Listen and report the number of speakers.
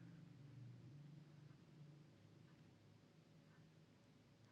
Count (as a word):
zero